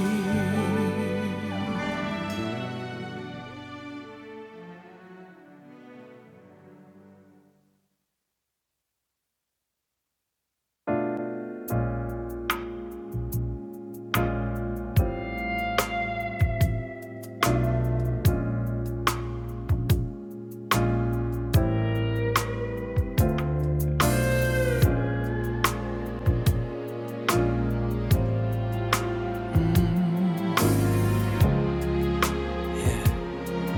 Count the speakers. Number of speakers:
0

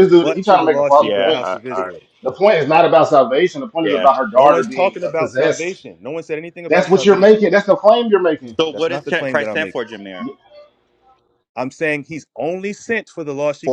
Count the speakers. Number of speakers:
3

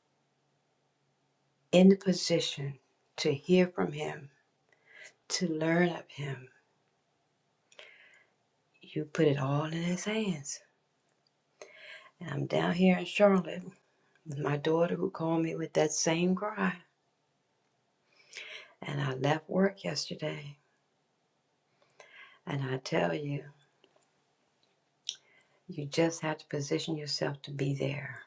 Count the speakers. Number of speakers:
1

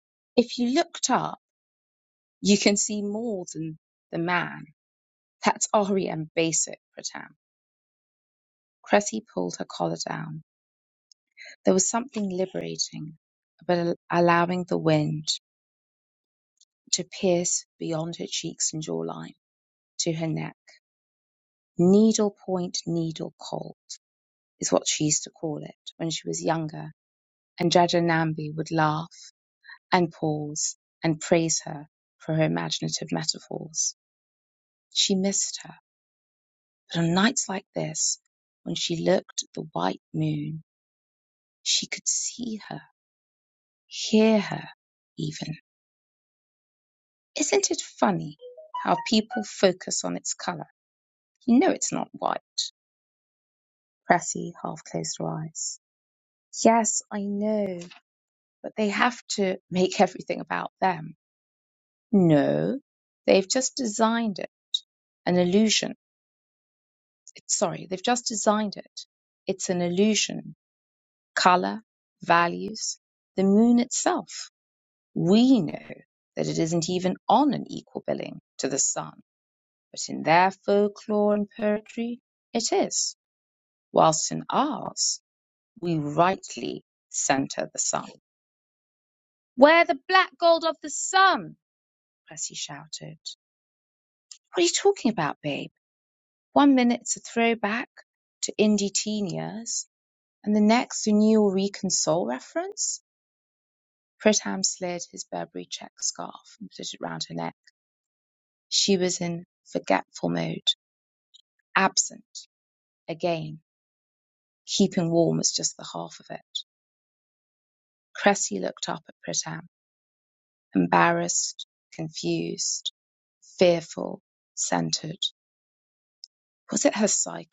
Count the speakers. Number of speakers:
1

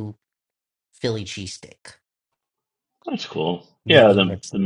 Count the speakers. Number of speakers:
2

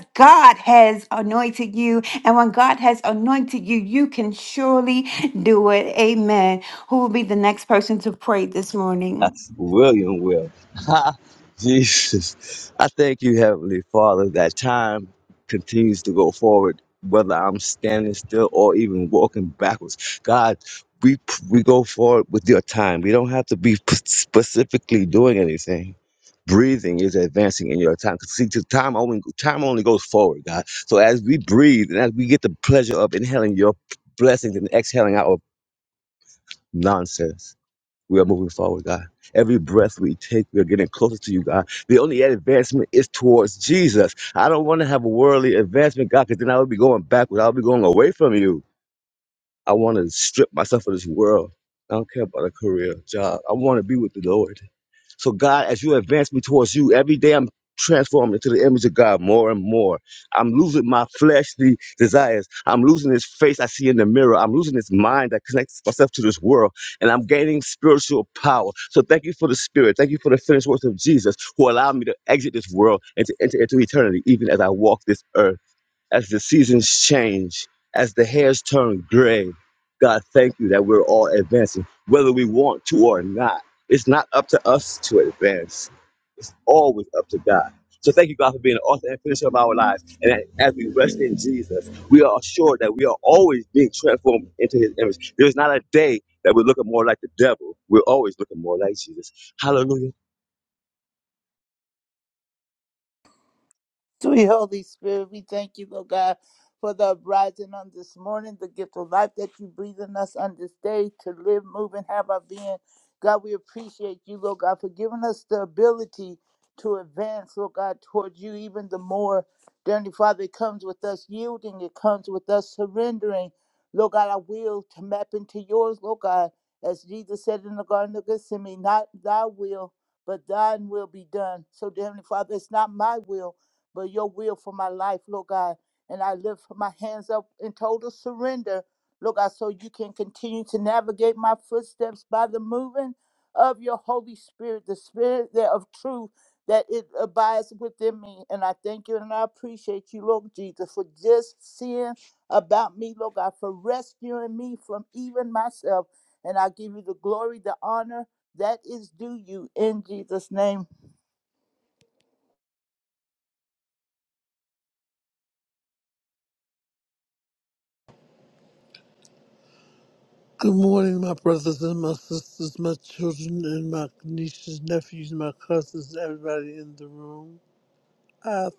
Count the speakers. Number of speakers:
4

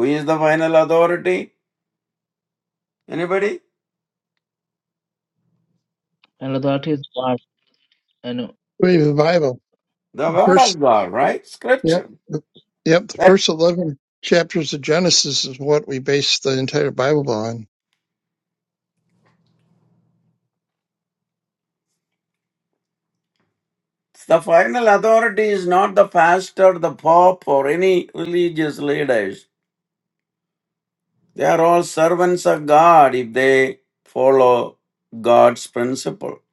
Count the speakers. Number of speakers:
3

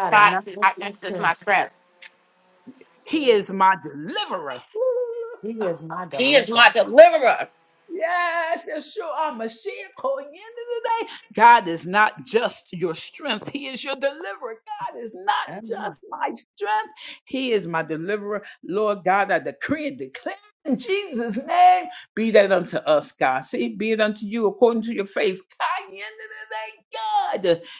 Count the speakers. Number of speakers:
3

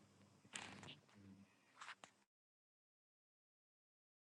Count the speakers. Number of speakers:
0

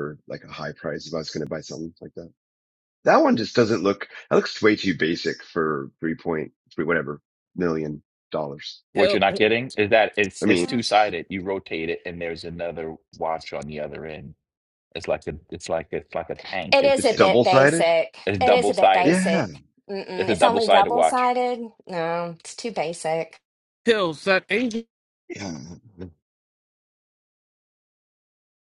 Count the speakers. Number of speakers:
4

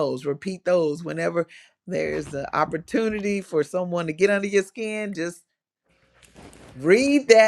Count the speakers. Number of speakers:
1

